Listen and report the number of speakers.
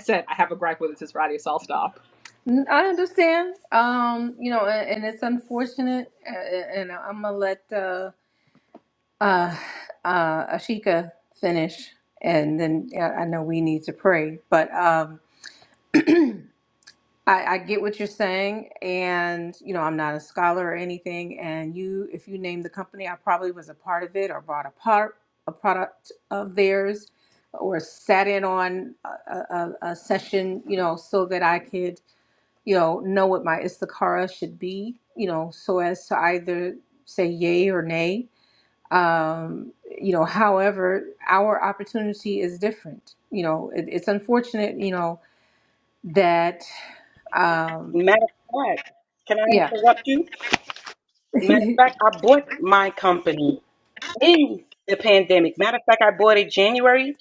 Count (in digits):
3